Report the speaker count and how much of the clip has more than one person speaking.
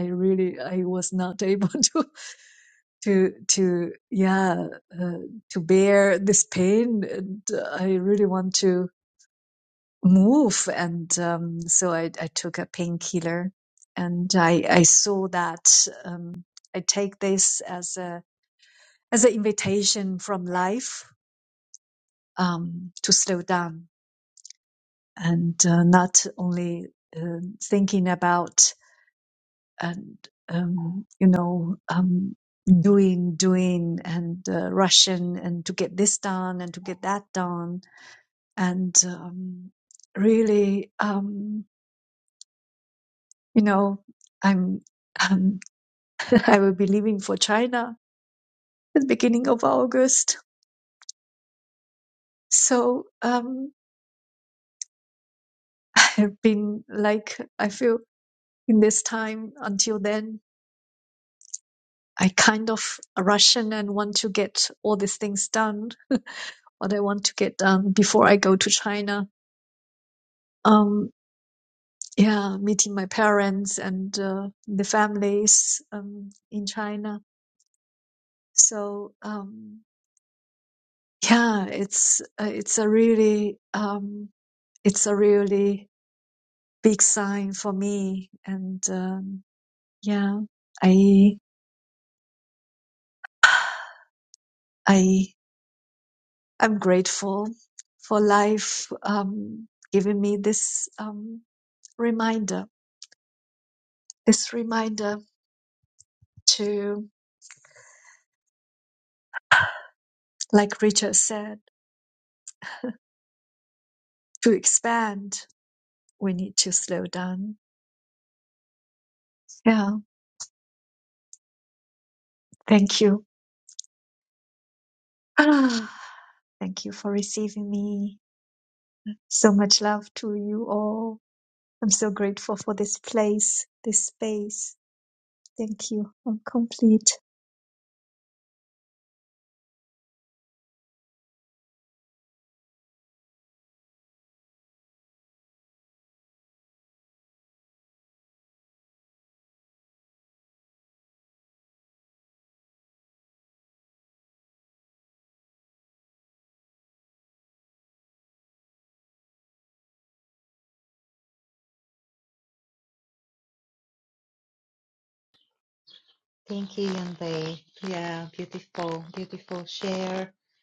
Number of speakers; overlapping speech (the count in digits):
2, no overlap